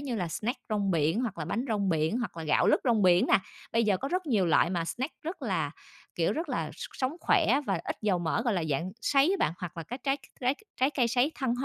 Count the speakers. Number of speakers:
one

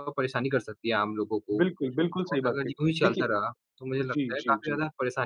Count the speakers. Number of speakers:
two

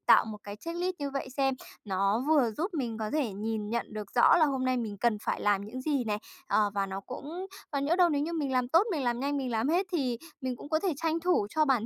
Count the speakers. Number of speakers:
one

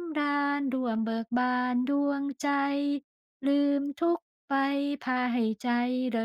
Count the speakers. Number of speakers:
one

